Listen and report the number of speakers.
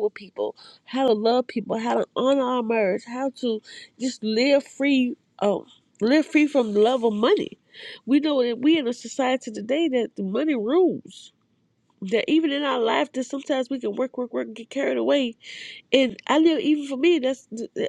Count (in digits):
1